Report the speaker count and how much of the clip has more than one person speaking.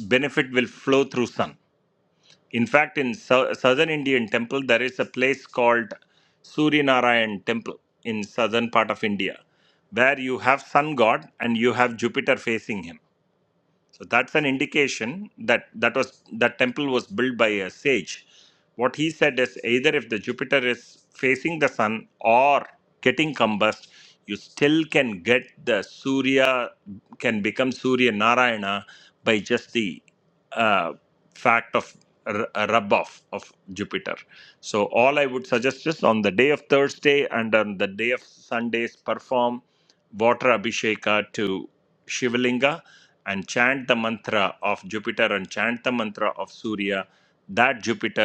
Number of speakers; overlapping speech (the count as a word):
one, no overlap